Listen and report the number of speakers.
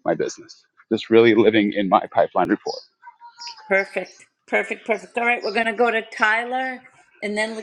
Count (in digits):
2